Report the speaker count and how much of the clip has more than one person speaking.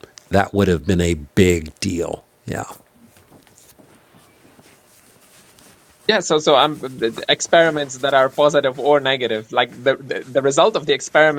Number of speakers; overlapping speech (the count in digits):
2, no overlap